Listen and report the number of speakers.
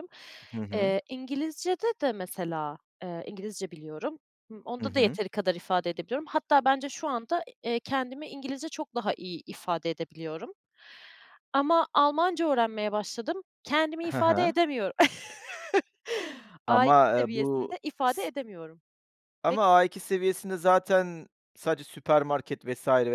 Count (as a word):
two